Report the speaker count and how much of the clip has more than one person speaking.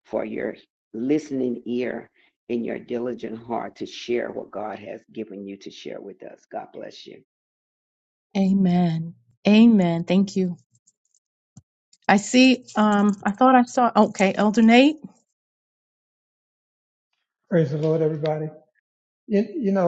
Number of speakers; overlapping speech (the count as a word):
three, no overlap